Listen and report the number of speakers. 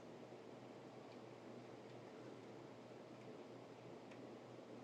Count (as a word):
zero